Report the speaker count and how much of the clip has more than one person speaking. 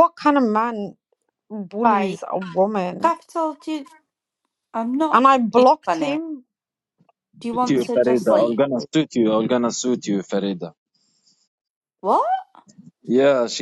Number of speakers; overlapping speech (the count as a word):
three, about 18%